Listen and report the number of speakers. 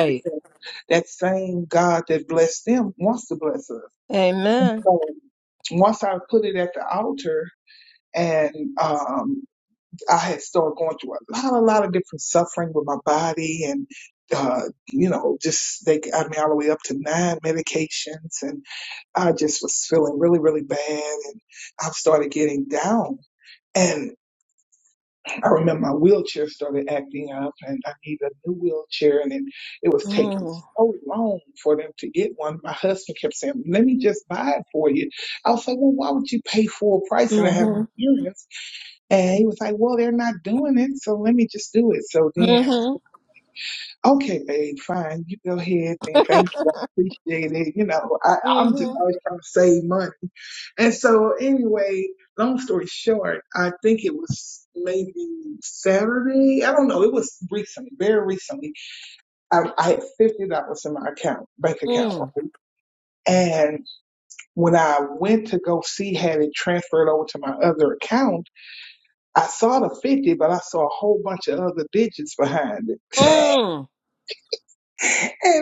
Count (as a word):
two